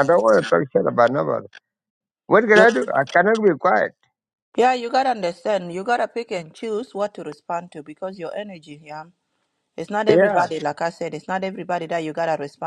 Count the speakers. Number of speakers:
two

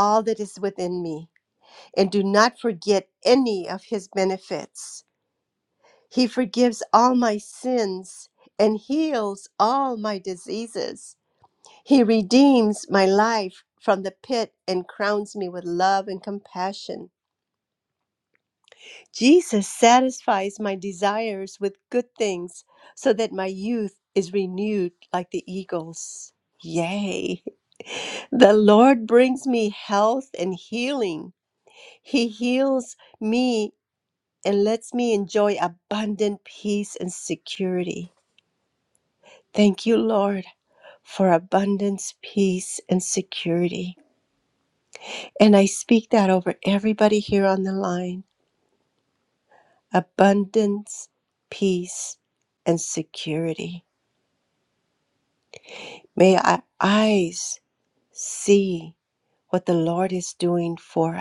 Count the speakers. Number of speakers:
one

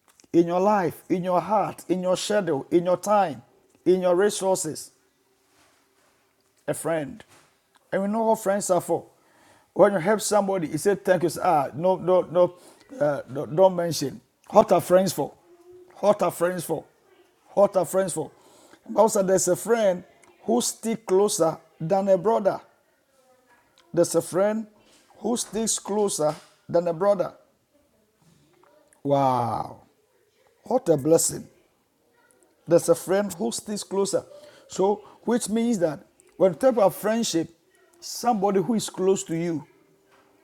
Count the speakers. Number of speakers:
one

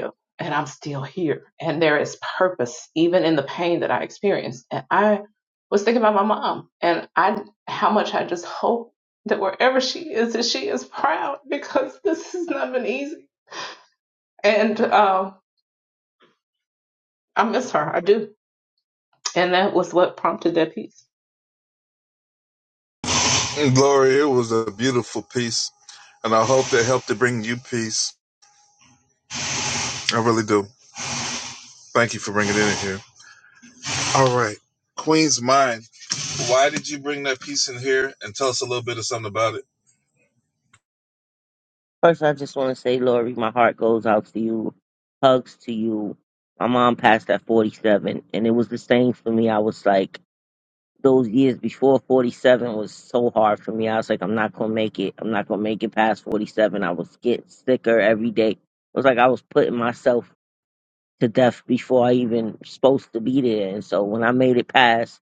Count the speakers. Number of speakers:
three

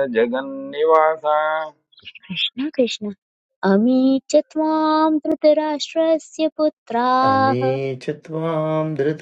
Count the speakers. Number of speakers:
three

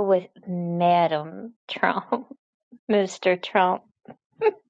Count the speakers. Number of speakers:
one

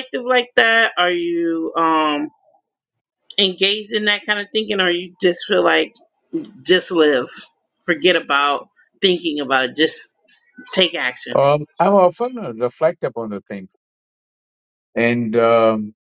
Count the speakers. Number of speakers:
two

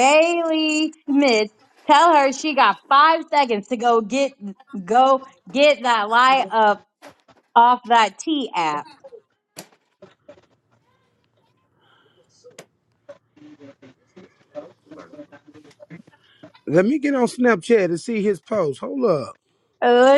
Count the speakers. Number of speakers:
two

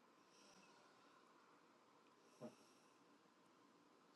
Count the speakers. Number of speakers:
zero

